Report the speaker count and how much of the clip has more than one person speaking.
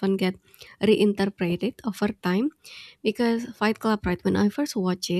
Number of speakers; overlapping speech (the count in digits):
1, no overlap